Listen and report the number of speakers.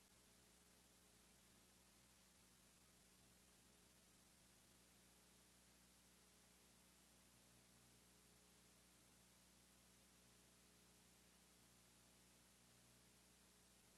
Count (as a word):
zero